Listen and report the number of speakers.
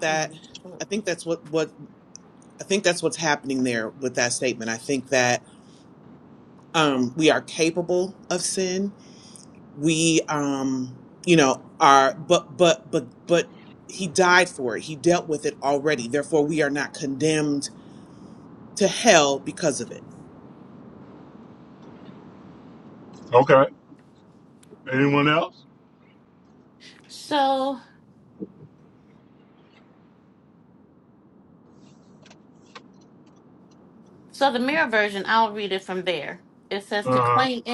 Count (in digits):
3